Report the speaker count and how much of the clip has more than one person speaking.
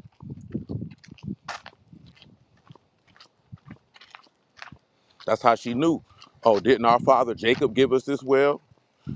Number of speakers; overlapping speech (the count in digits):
1, no overlap